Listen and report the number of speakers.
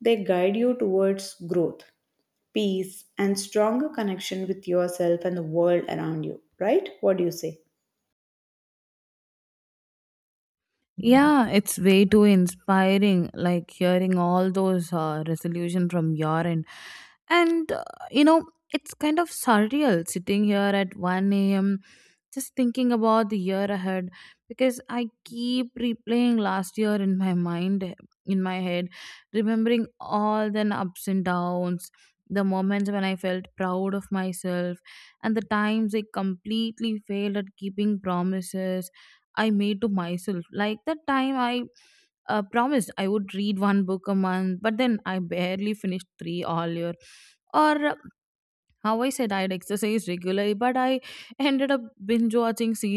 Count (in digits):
2